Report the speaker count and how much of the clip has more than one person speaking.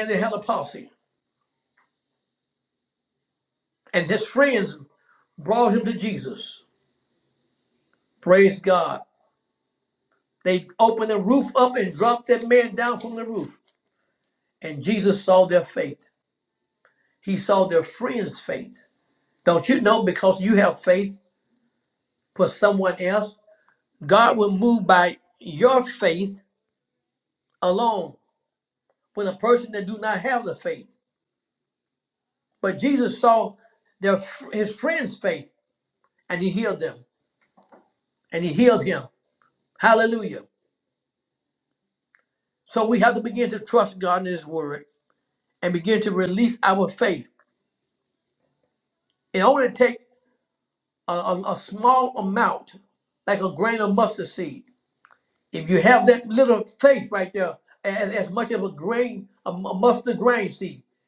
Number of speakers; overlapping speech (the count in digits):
1, no overlap